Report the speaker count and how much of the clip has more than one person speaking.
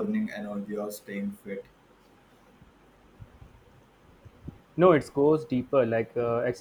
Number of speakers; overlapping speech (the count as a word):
two, no overlap